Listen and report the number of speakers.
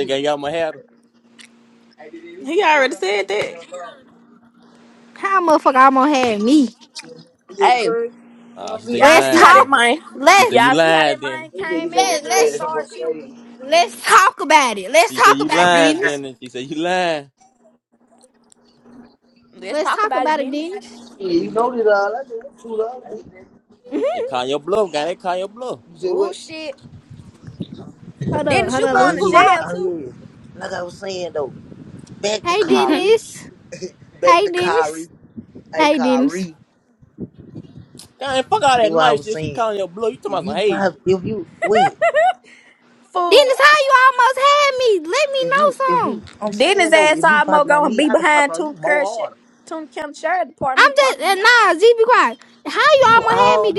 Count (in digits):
5